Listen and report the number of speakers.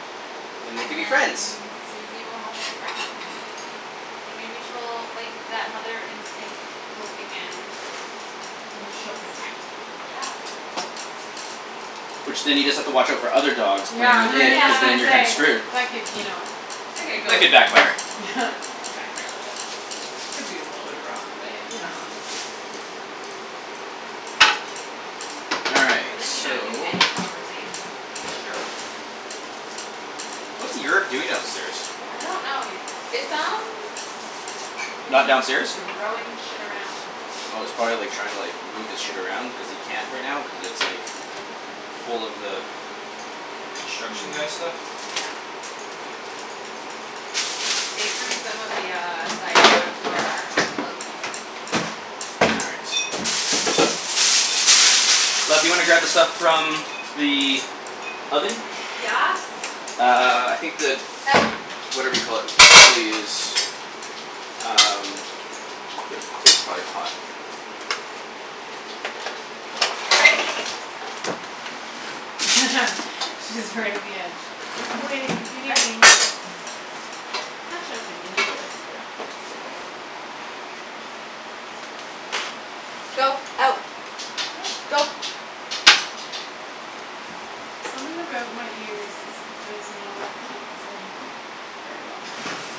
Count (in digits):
3